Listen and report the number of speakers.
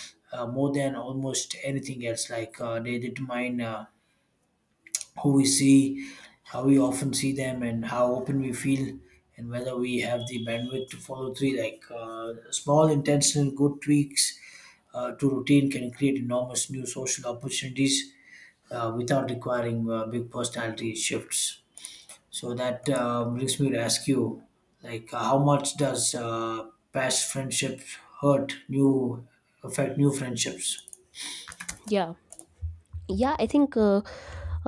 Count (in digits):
2